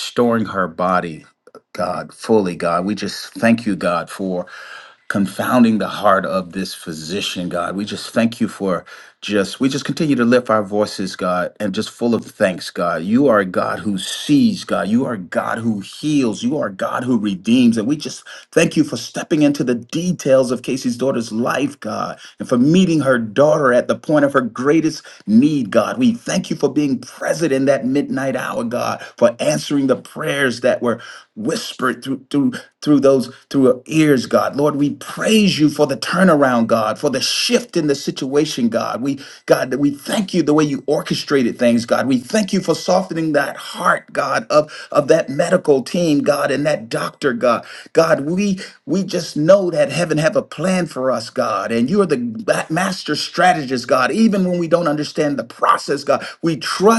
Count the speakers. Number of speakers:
1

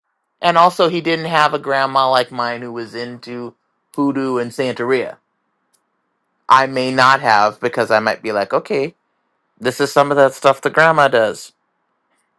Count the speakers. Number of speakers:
1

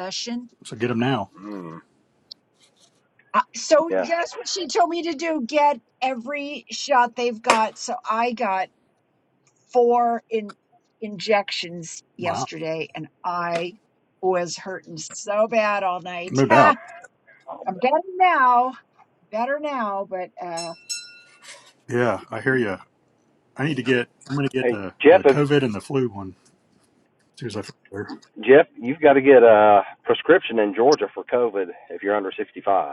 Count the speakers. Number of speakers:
3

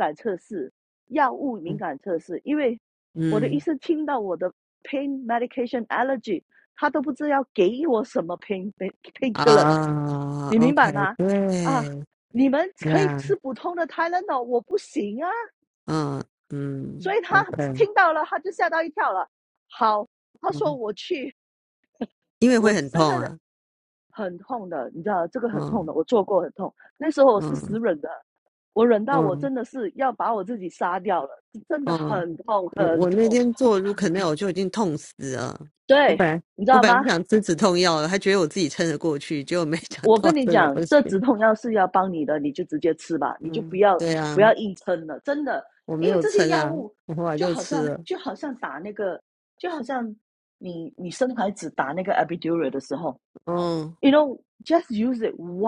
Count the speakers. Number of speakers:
2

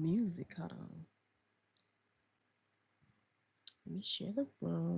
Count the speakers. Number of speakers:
1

